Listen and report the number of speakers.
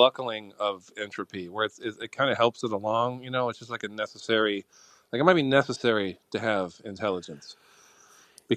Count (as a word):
one